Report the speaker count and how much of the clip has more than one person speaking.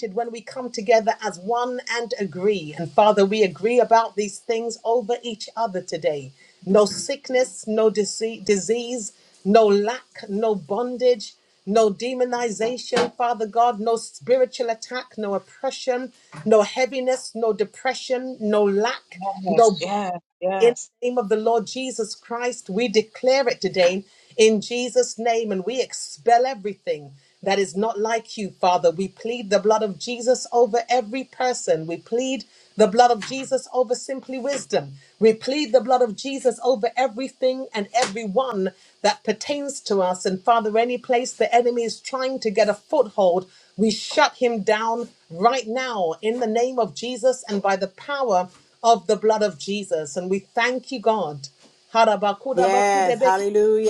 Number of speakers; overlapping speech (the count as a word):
three, about 2%